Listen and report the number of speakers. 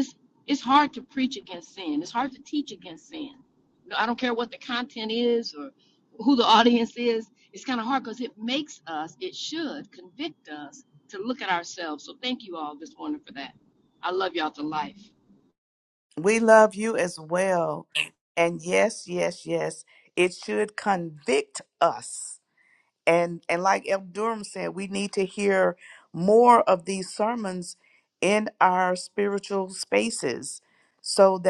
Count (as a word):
two